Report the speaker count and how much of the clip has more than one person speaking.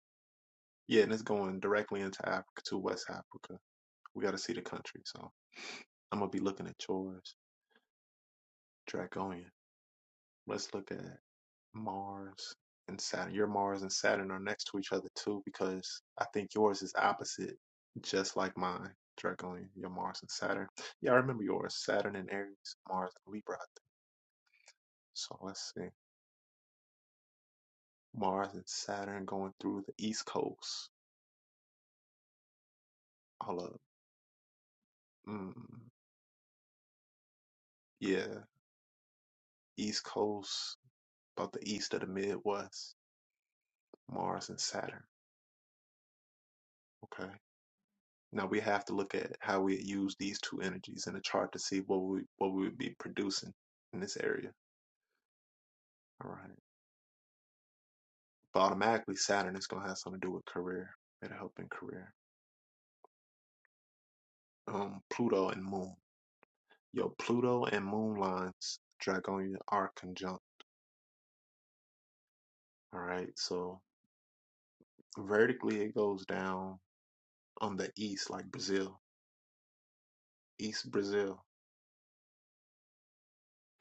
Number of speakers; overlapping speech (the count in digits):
1, no overlap